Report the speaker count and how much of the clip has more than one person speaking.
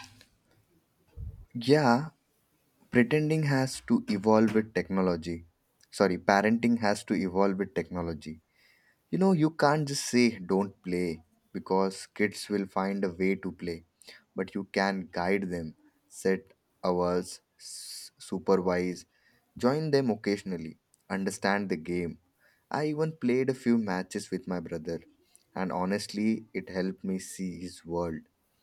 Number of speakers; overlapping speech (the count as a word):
one, no overlap